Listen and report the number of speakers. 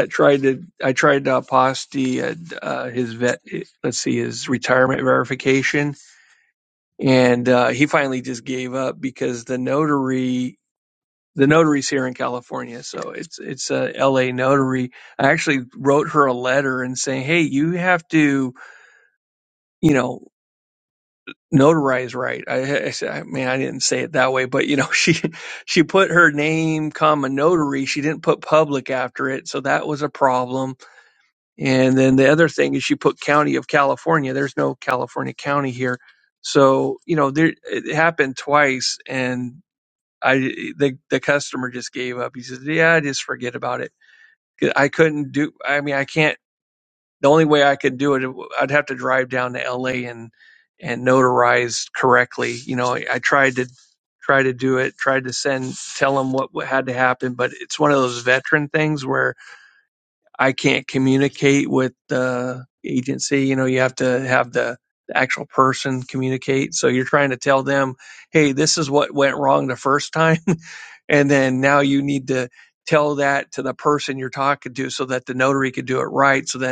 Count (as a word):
one